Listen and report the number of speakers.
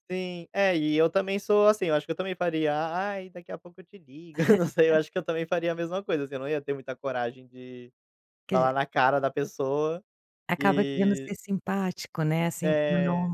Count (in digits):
2